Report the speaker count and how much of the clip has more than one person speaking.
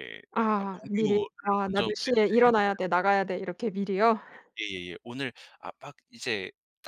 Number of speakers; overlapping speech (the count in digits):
2, about 27%